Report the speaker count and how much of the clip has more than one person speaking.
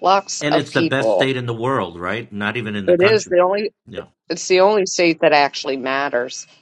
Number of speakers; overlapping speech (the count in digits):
2, about 20%